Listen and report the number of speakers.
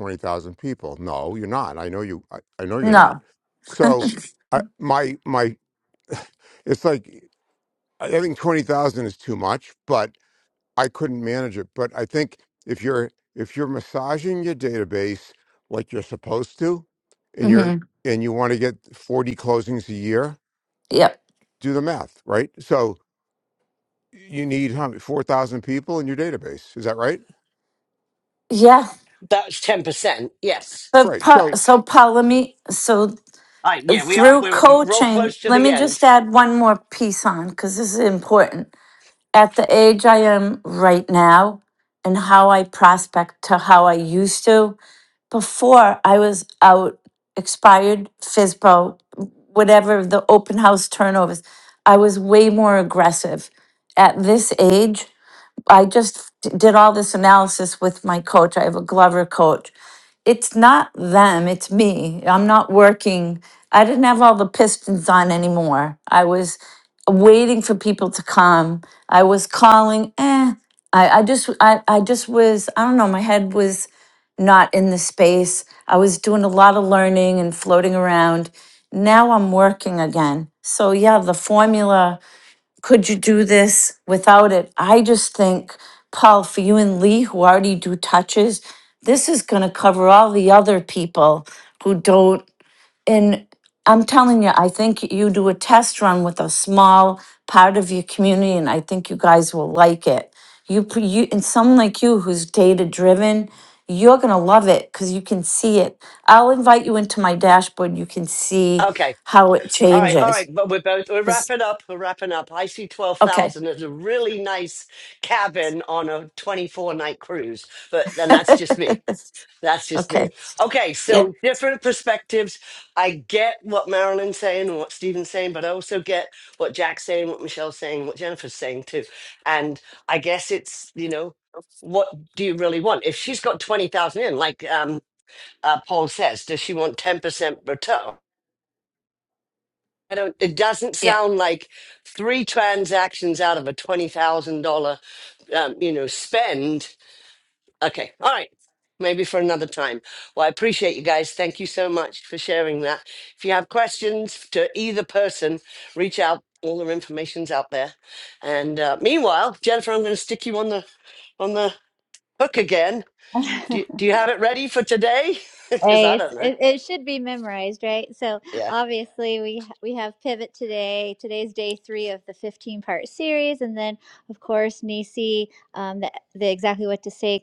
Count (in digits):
4